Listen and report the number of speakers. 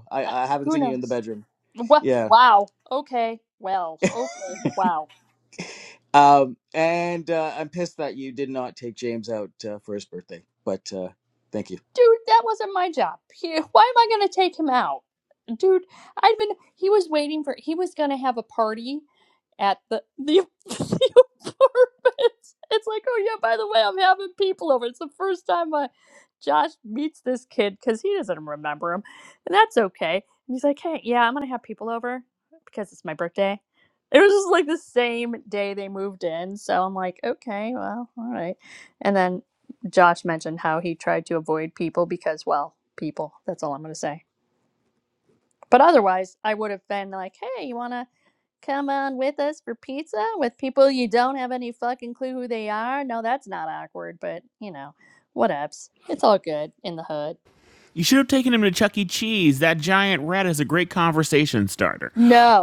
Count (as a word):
three